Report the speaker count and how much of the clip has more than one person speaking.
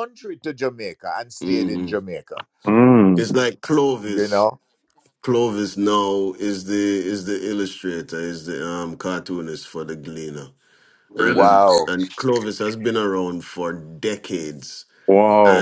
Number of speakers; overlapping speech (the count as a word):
three, about 12%